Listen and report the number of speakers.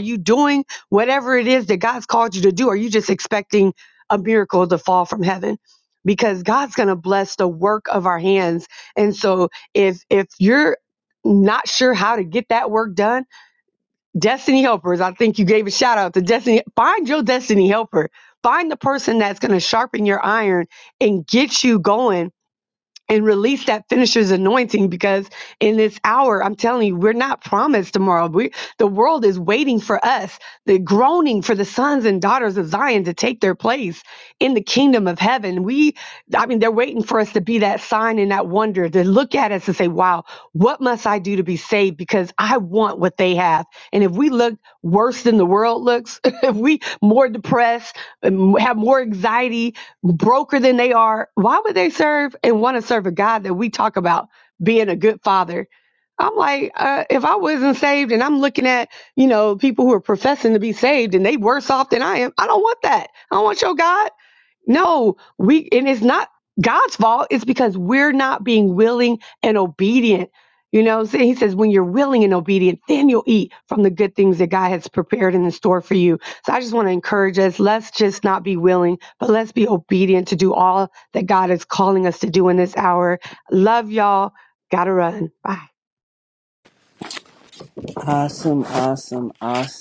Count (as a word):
two